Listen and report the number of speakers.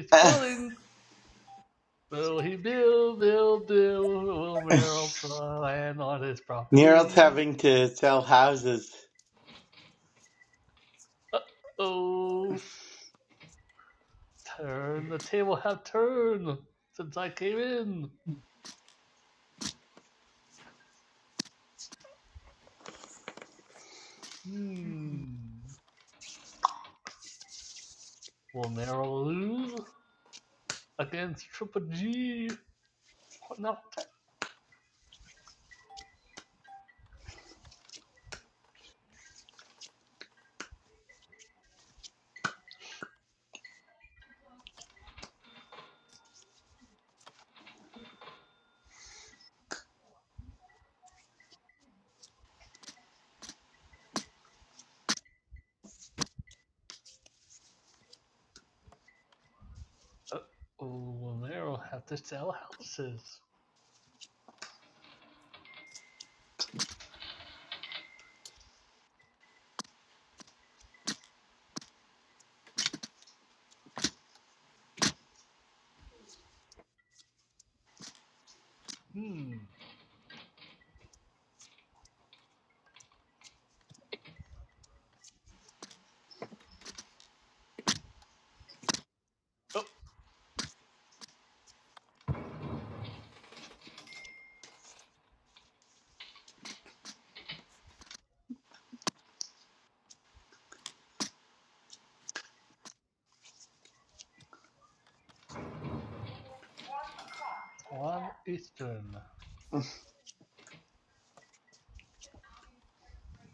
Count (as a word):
two